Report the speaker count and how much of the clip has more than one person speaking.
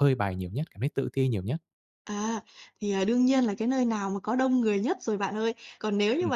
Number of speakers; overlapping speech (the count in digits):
2, about 2%